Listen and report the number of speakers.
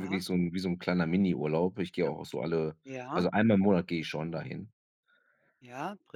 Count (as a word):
two